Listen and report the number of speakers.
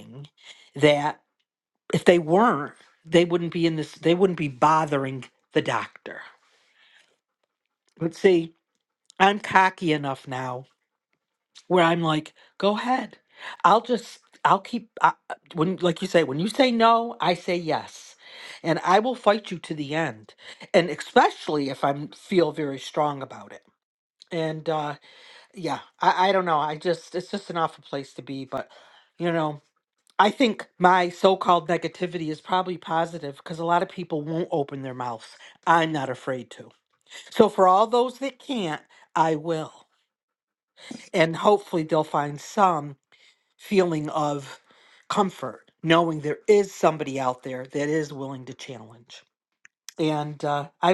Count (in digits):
1